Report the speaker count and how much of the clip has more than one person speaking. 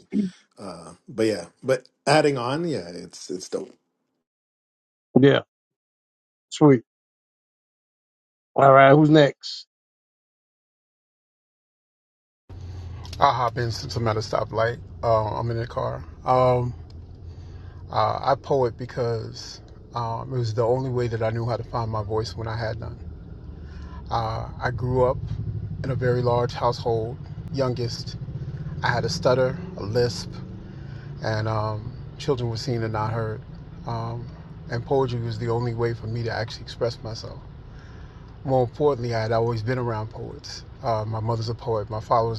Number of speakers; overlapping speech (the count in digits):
3, no overlap